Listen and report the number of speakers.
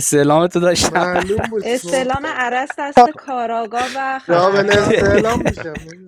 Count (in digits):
3